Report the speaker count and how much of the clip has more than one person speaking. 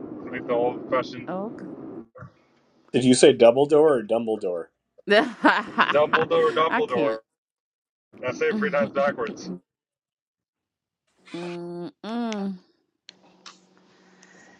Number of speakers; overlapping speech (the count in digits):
3, about 4%